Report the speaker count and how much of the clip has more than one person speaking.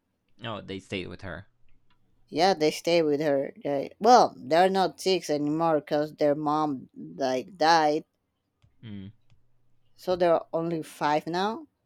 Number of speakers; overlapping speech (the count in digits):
2, no overlap